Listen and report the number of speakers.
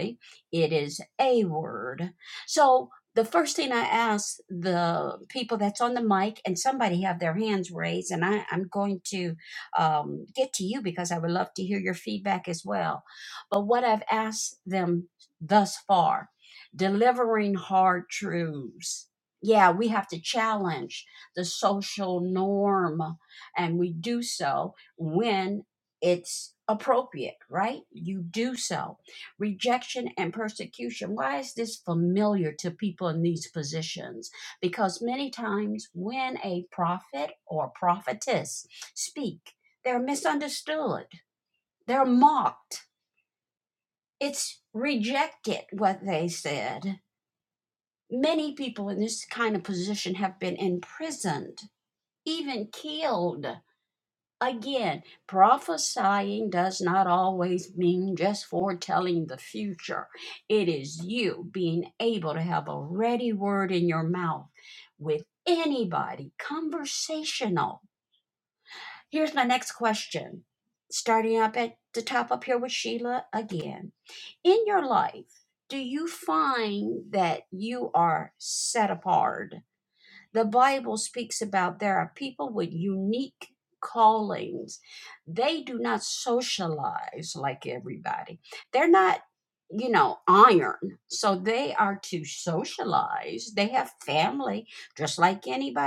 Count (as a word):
one